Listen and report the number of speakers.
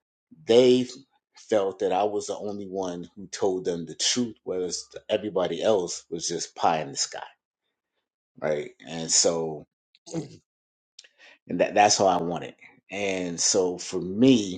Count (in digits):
1